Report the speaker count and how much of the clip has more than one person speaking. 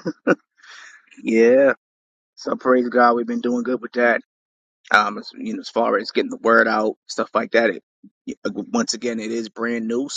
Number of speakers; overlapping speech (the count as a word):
one, no overlap